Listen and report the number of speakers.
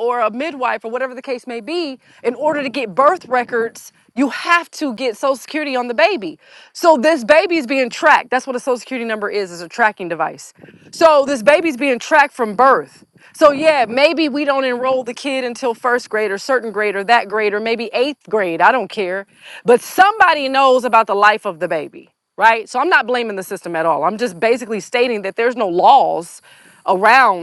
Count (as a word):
one